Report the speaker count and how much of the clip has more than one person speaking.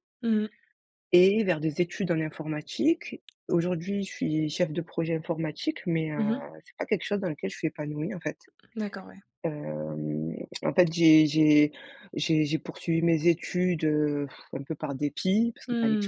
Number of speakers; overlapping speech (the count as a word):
two, about 3%